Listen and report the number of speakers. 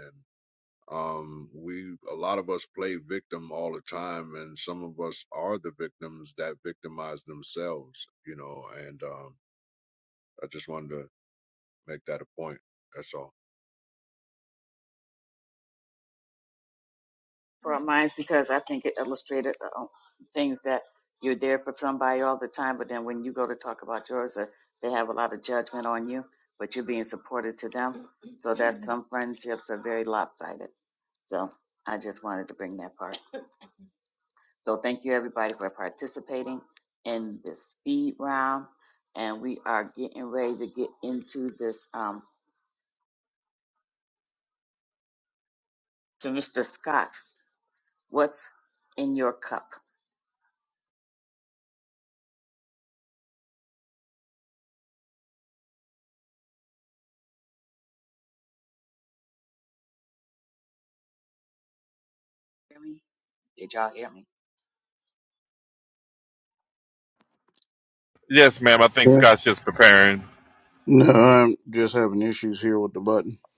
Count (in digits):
4